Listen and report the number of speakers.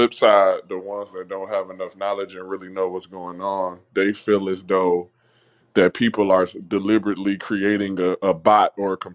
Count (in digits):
1